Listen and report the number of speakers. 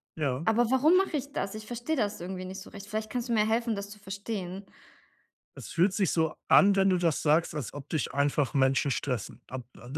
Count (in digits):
2